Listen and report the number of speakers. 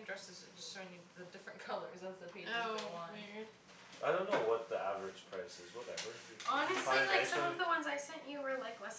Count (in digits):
3